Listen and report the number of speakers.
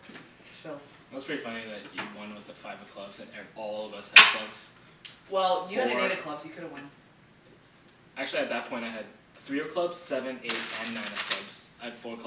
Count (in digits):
2